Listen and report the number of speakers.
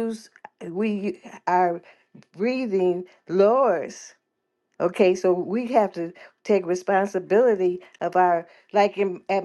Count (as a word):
one